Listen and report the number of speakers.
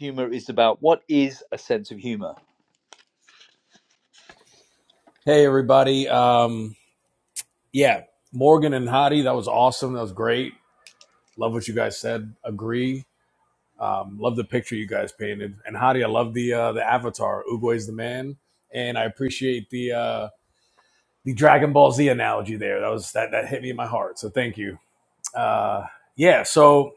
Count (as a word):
two